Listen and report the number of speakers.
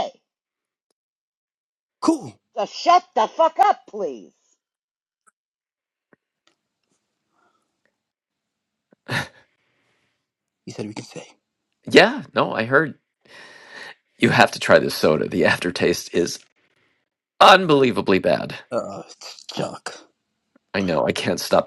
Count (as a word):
three